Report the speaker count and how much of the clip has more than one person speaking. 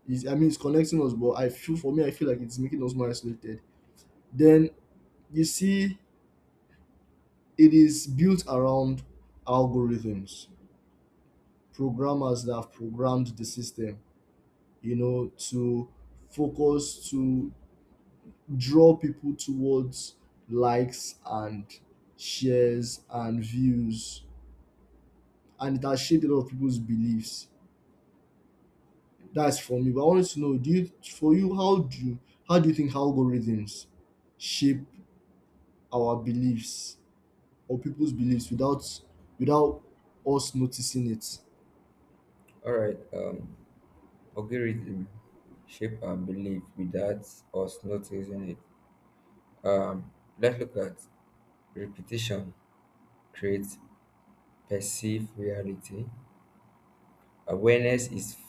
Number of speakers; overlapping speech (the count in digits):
2, no overlap